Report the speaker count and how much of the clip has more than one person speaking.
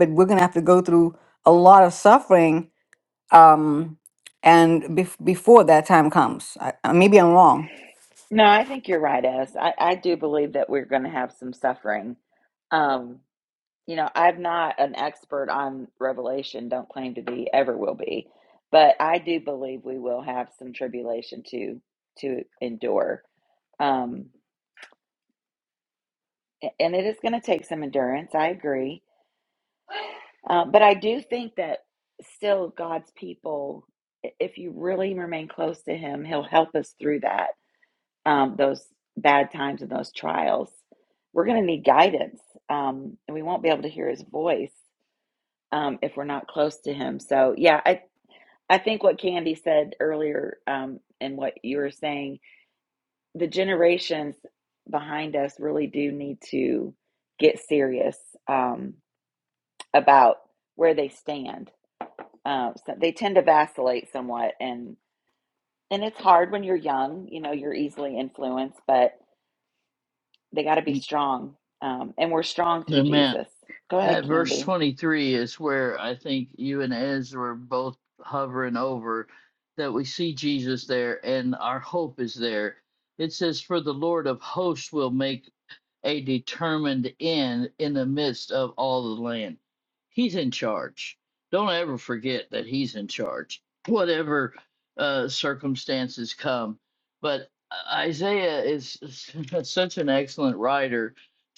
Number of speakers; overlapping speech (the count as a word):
three, about 1%